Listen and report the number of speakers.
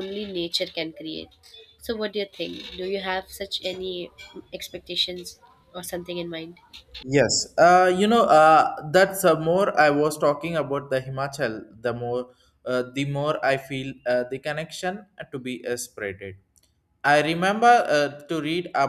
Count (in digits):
2